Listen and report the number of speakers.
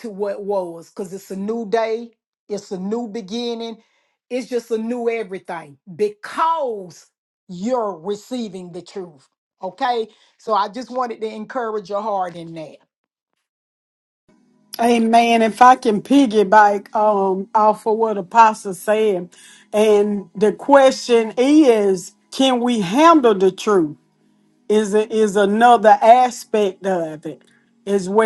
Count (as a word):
two